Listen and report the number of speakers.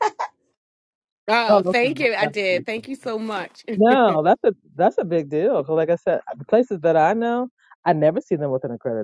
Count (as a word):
two